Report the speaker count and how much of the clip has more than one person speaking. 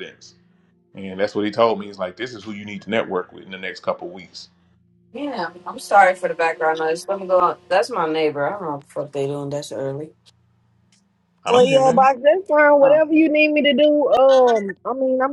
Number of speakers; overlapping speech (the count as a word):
three, about 5%